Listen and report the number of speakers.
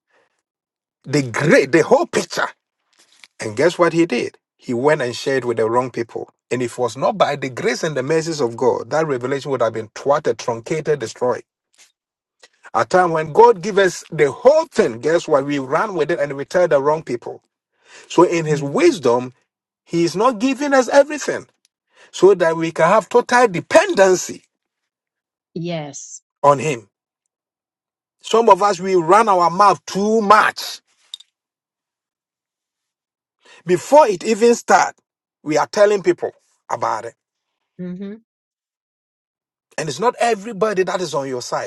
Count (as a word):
two